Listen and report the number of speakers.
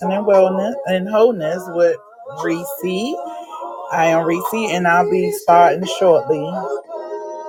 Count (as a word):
one